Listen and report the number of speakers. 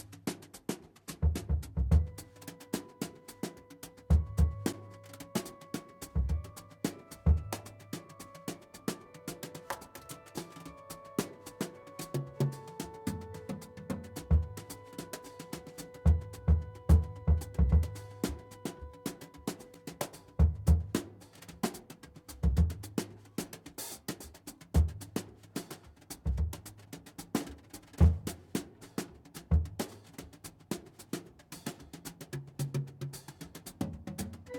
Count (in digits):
0